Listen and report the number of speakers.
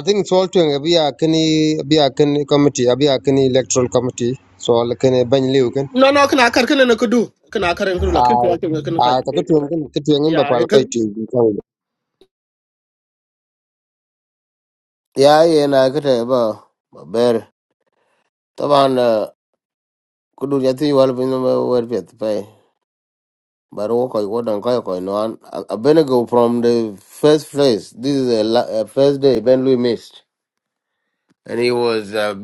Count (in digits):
3